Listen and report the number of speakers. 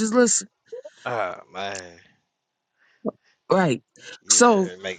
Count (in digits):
2